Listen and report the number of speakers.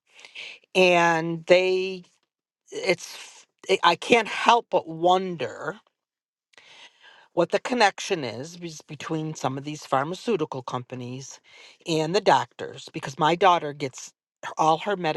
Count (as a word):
one